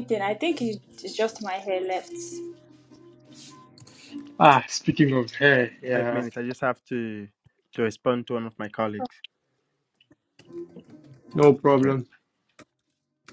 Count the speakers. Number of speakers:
three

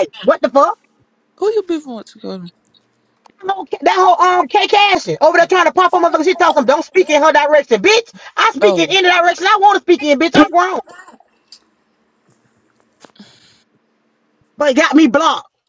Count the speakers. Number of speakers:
two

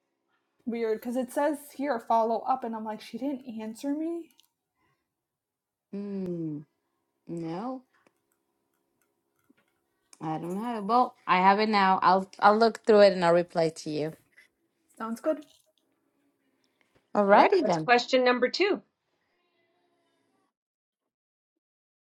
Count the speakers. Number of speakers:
three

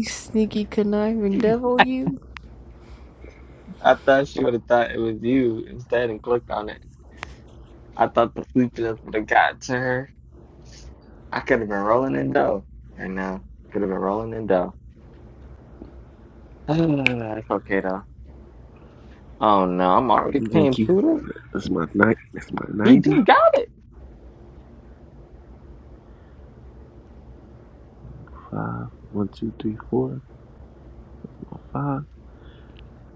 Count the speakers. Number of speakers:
three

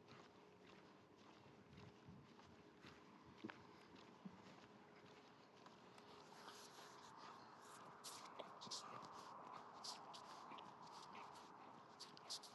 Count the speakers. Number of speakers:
zero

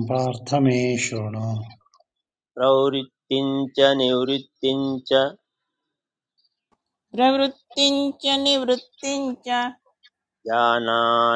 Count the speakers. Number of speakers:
three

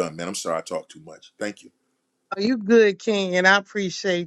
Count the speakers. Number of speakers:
two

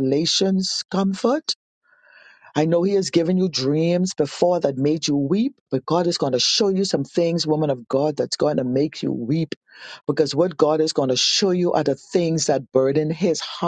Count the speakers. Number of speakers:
one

